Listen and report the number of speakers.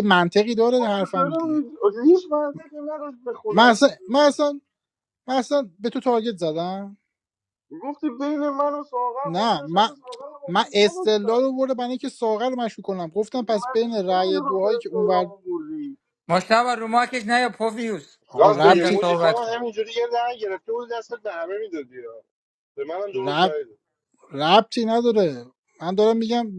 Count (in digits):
4